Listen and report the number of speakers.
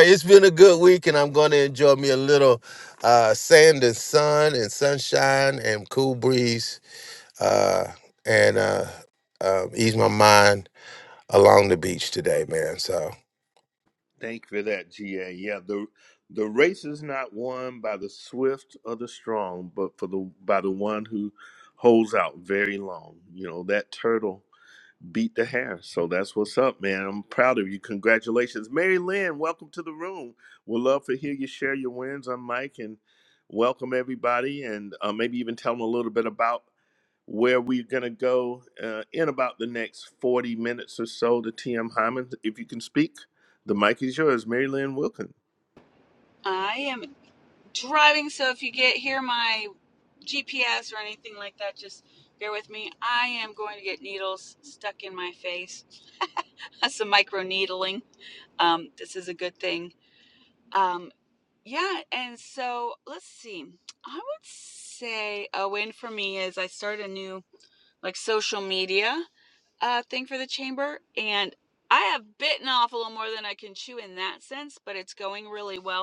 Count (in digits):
3